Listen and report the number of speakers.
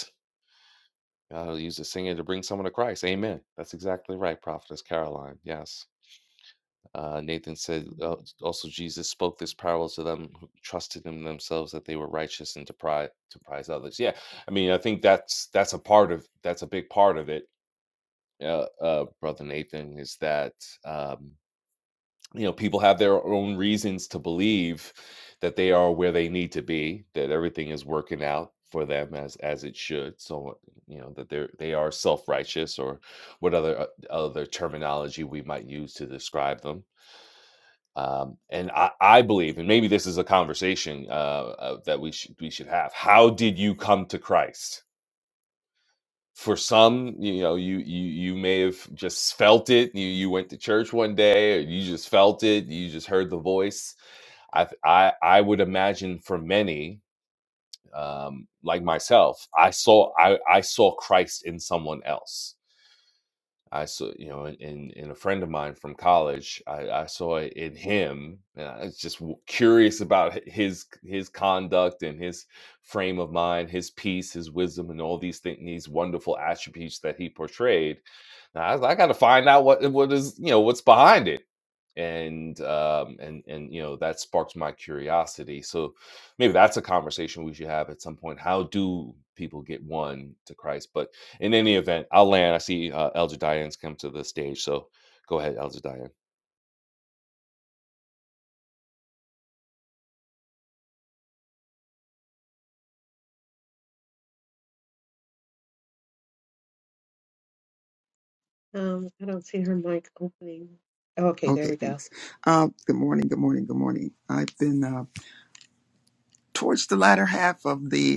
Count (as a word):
three